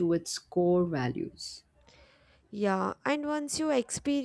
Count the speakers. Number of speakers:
2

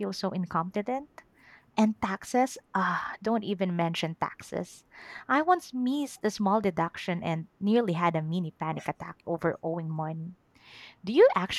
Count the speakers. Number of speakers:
1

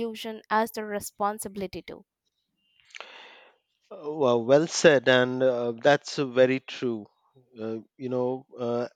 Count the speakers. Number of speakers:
2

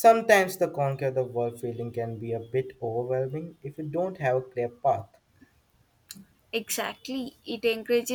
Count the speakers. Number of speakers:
2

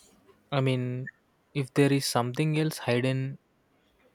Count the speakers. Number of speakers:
1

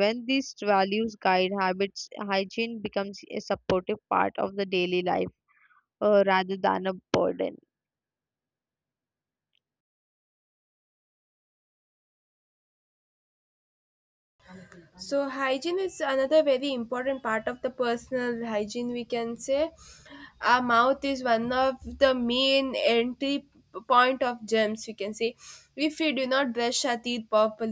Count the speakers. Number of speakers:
2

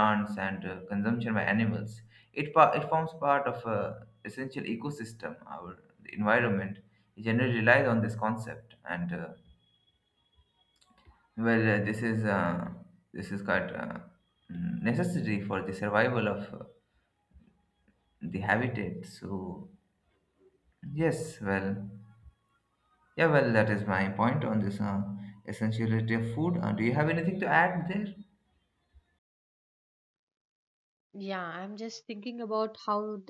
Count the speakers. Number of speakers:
2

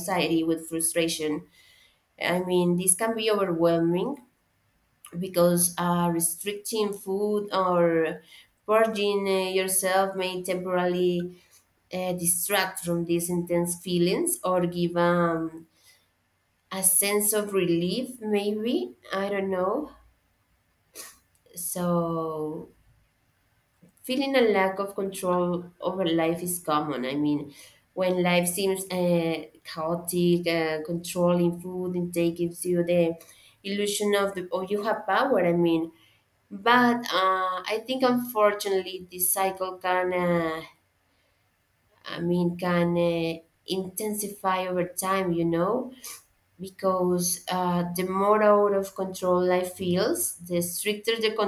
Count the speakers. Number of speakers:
1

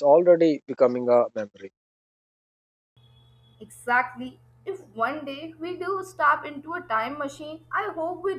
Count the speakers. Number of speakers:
2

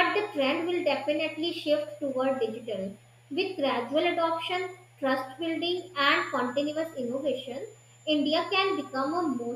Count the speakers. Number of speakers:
1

